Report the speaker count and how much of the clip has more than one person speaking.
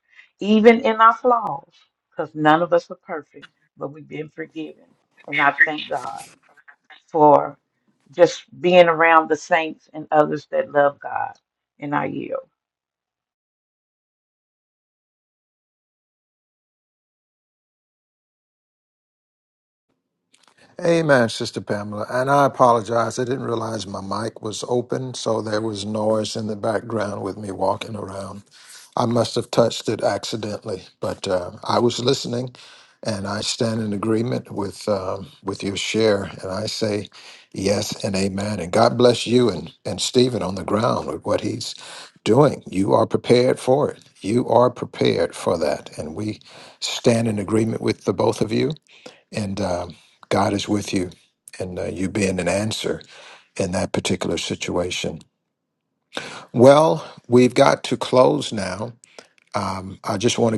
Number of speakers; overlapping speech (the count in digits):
2, no overlap